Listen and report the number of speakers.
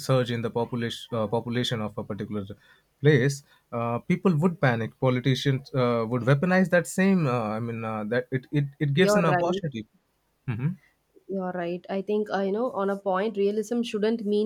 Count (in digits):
2